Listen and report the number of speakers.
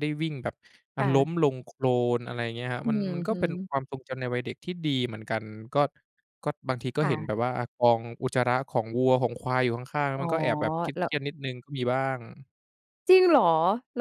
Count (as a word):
two